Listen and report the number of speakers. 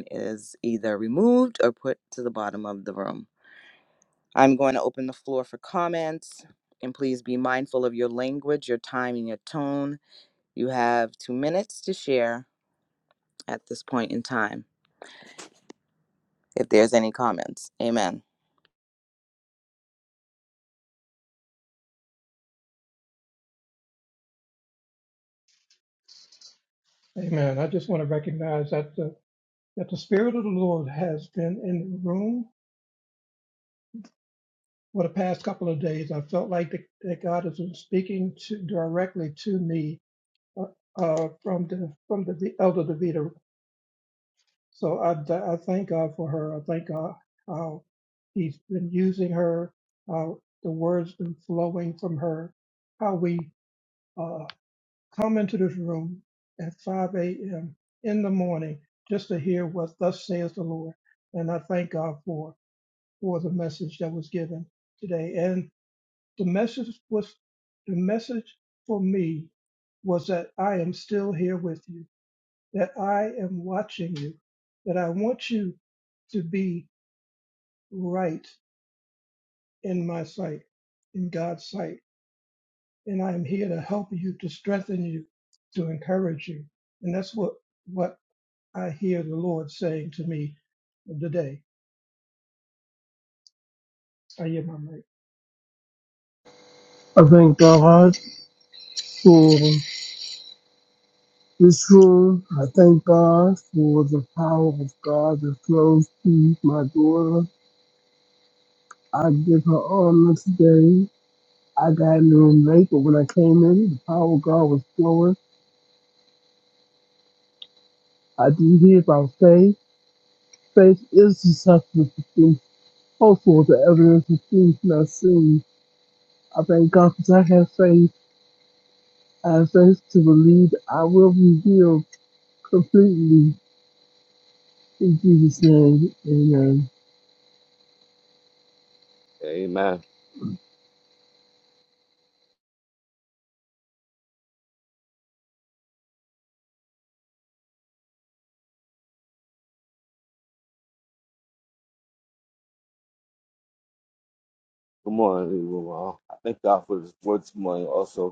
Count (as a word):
four